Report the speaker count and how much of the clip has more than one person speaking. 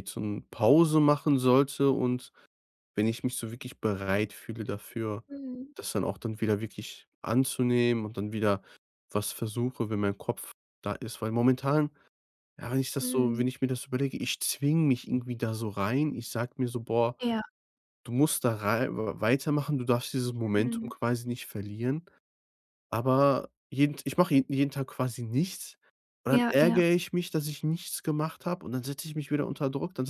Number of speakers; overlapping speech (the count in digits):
2, about 5%